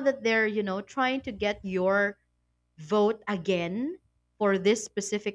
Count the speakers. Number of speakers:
one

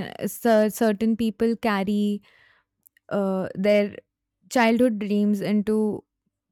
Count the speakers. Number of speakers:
one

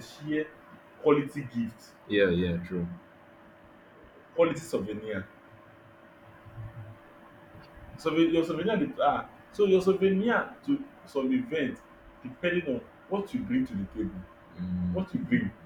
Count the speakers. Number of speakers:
two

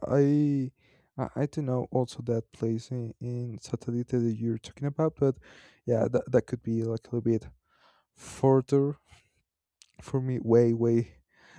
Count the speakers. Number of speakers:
one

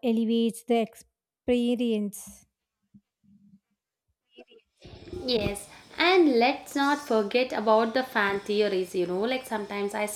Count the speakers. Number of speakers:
two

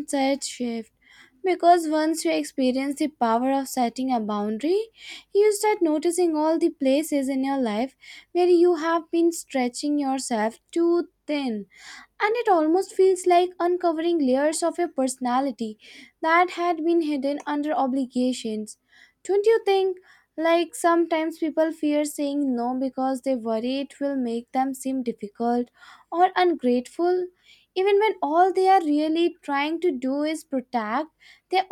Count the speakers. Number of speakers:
one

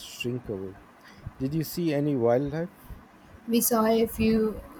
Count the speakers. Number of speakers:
two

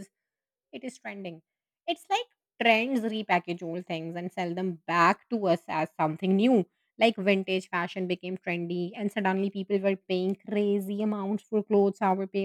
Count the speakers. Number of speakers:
one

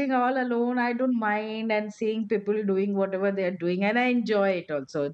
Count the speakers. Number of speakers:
one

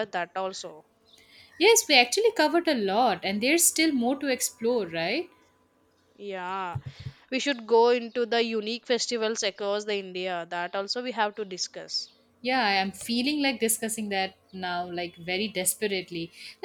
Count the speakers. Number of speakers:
two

